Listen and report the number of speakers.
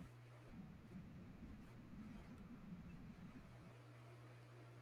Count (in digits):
0